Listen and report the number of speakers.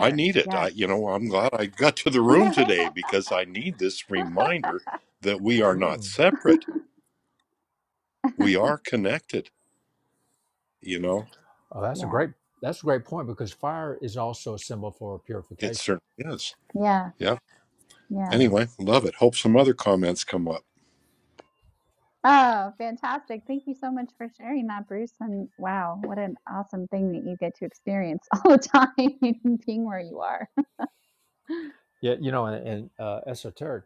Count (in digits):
3